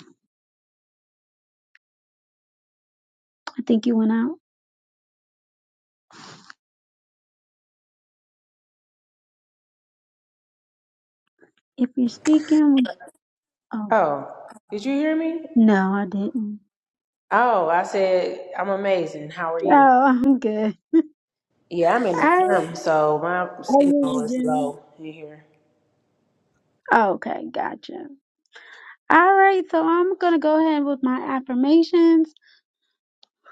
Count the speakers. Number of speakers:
2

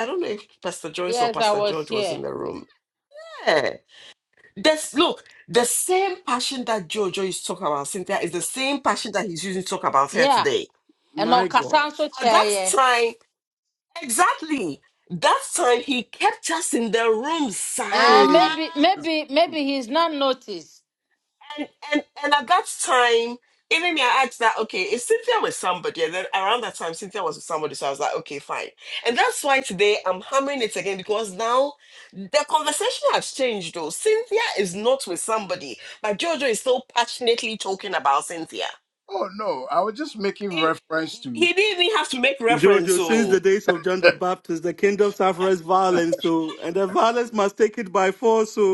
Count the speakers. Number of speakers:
4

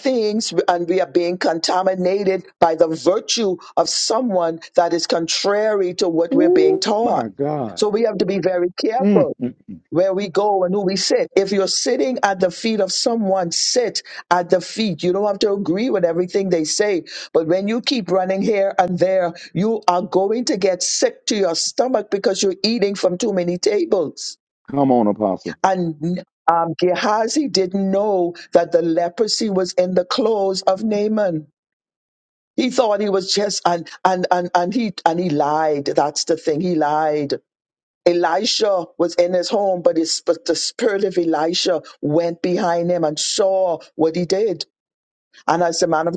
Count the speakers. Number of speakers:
2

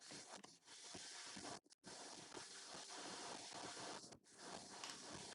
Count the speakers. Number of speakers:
0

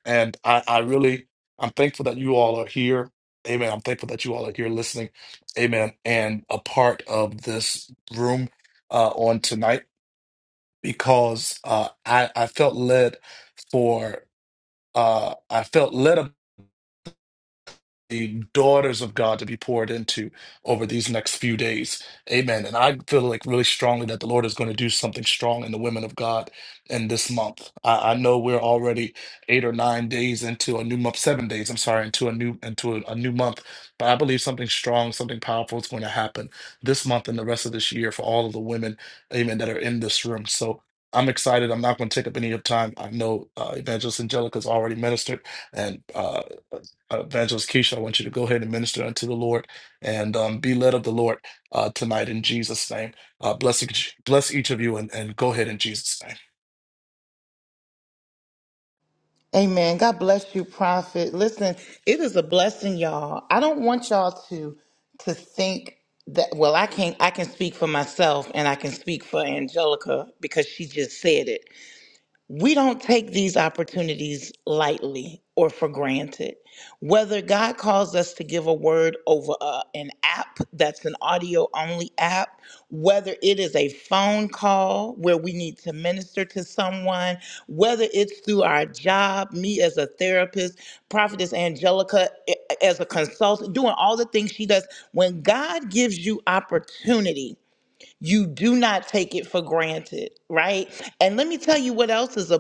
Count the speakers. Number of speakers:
2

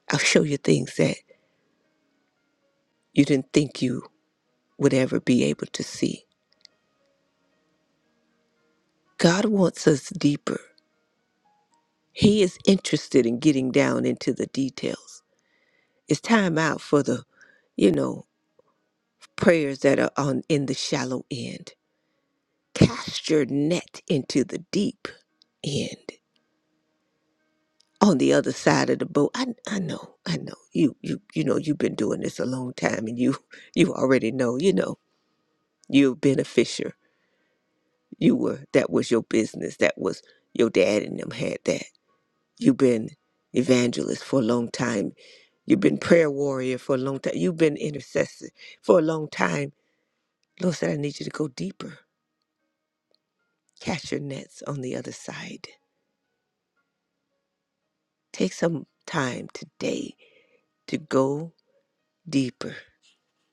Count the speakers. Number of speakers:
1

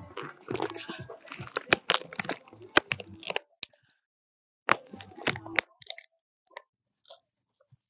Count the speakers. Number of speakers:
0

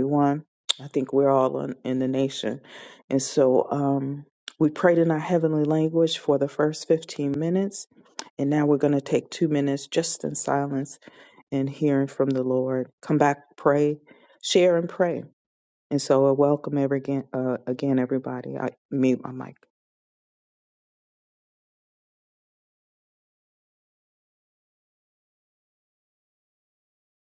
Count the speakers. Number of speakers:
1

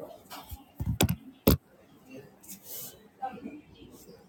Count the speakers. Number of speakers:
0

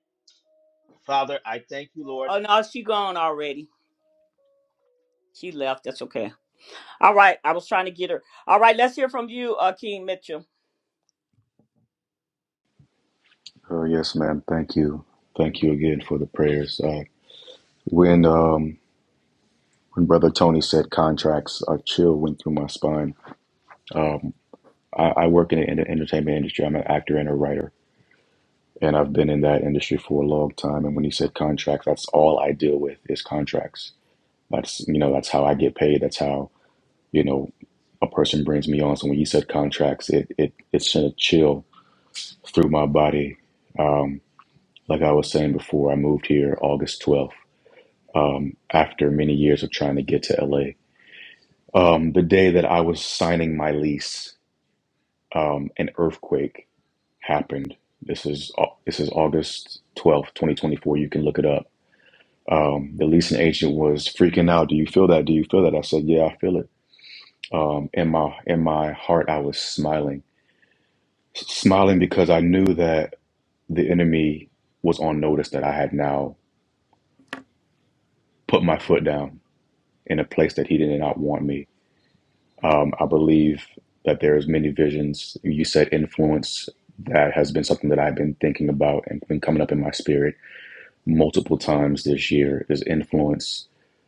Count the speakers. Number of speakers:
3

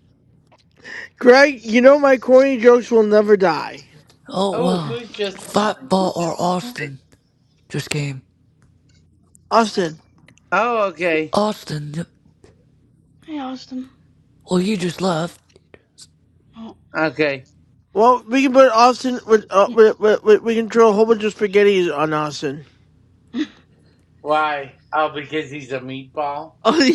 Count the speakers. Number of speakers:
4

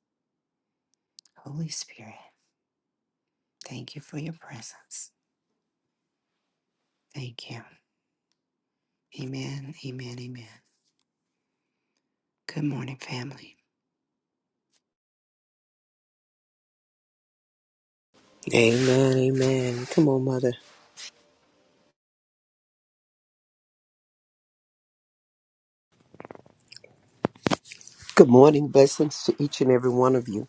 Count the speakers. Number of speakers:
3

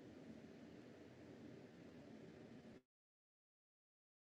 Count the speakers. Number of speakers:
0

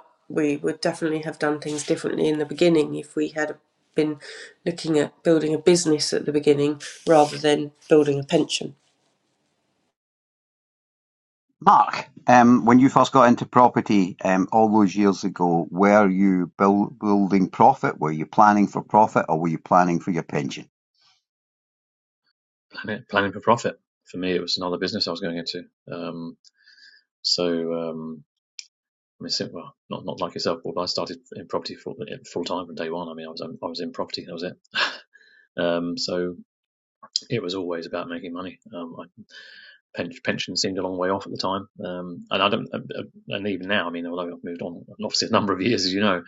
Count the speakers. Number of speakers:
3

